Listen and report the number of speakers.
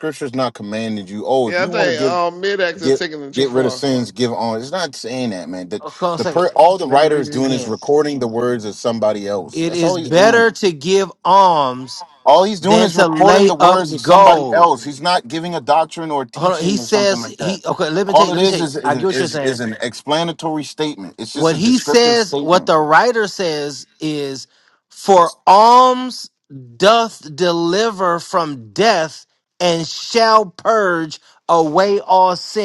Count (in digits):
3